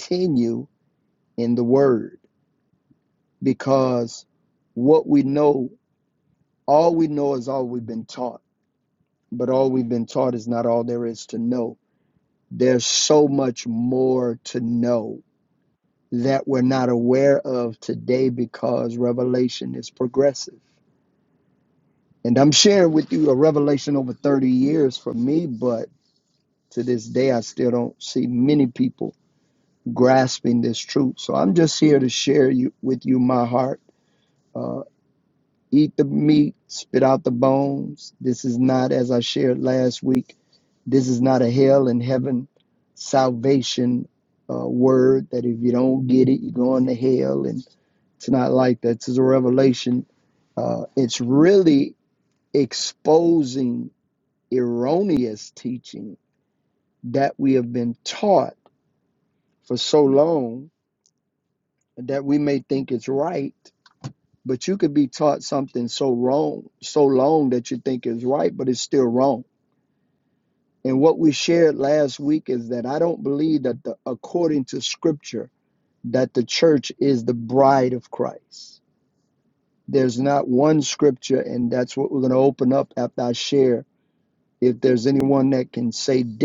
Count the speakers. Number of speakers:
one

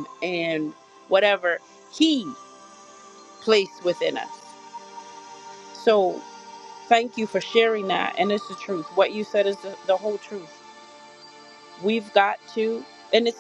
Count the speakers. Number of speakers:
one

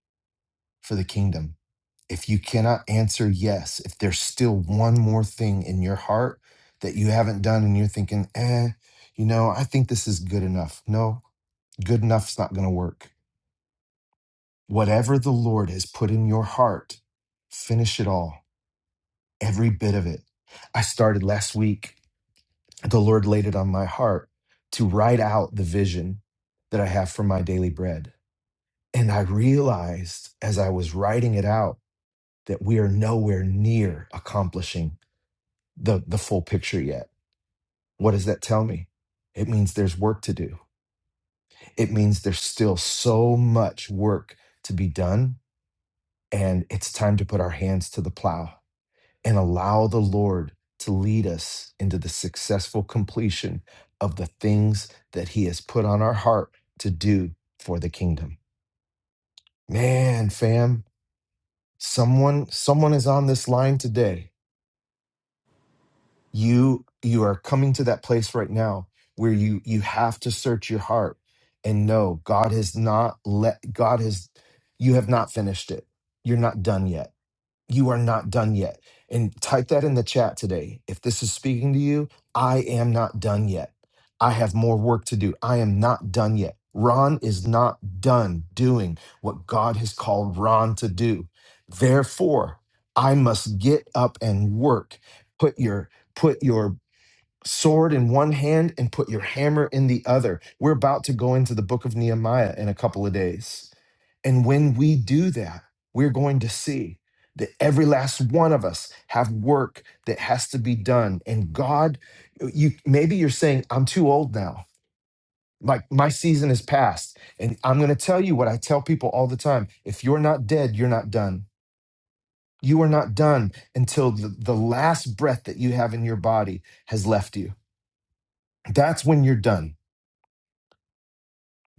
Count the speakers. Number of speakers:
one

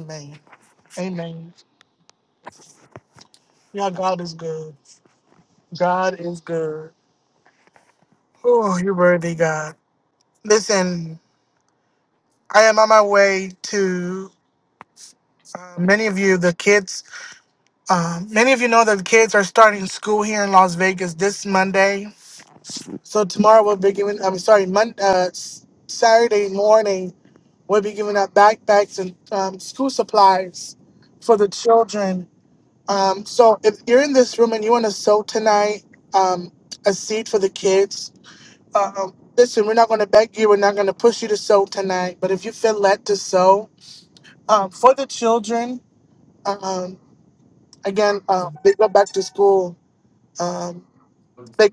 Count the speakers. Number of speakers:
one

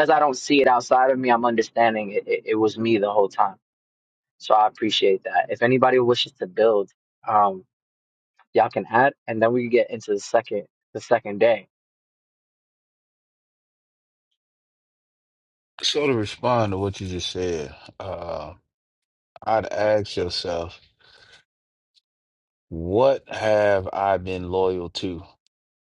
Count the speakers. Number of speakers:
two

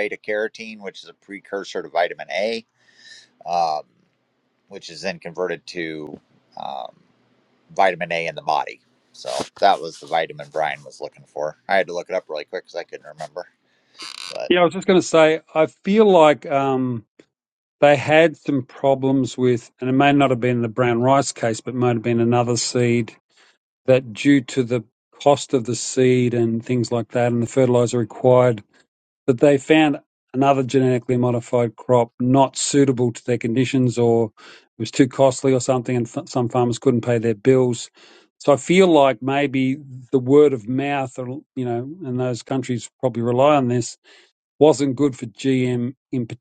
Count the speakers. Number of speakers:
two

